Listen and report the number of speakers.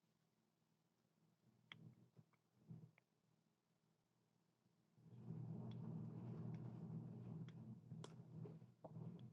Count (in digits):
0